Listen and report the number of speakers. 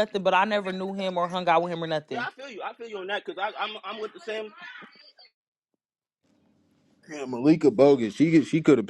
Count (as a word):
three